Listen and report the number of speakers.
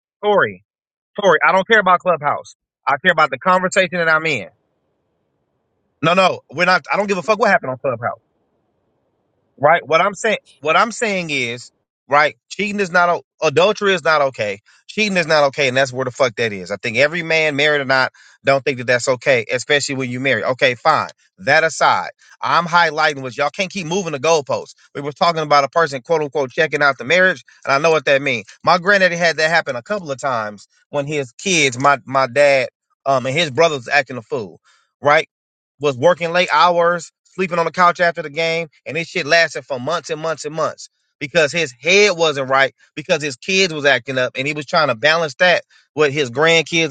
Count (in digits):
1